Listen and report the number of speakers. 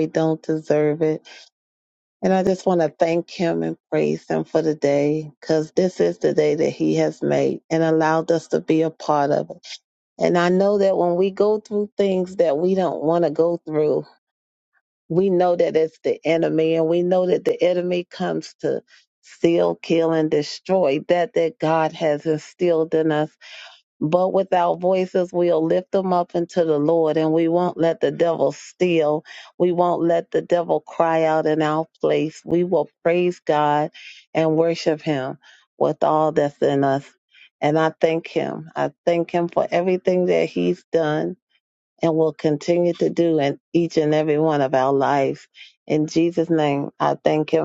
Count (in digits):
1